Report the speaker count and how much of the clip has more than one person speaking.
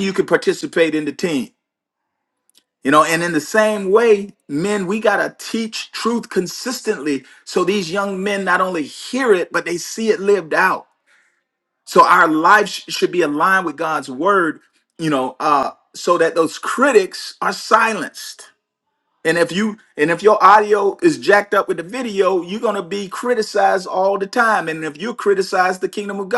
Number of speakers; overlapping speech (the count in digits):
1, no overlap